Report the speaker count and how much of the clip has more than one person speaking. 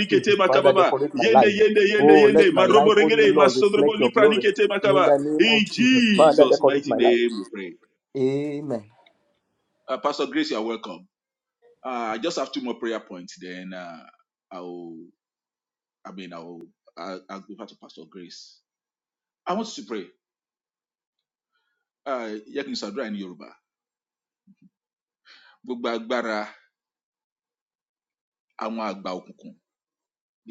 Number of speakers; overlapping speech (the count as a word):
two, about 21%